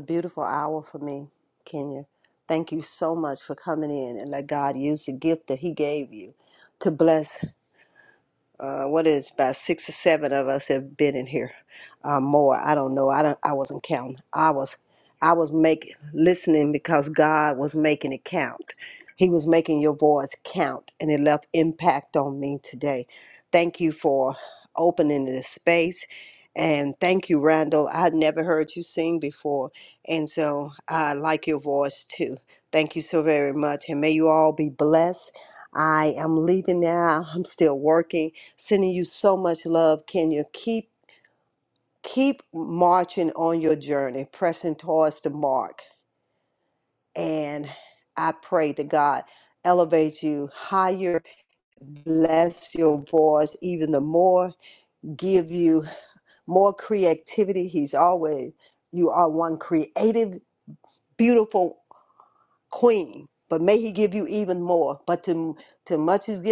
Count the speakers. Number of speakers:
1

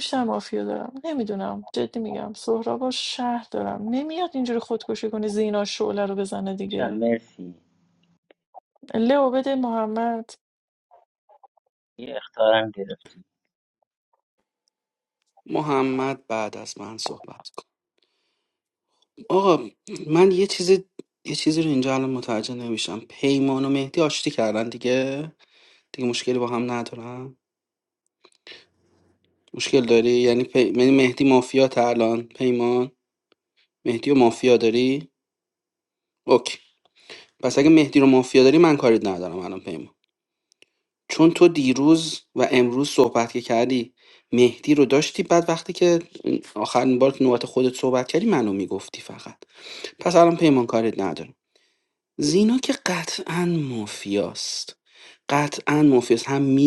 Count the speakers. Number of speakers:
3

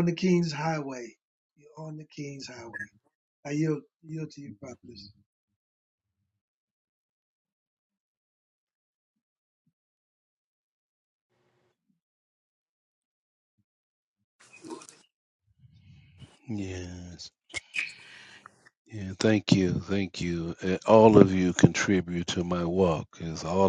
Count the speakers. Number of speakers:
2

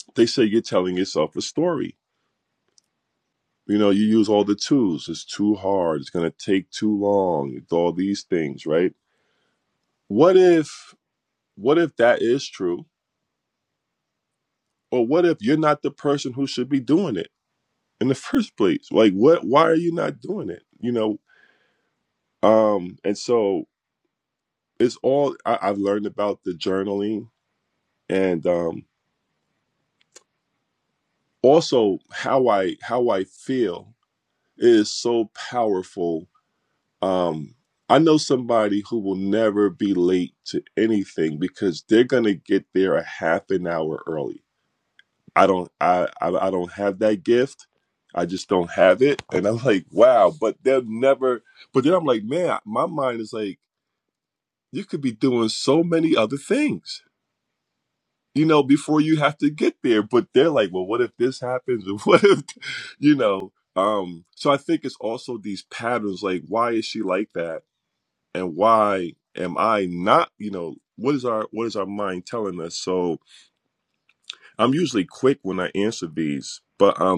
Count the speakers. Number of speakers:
1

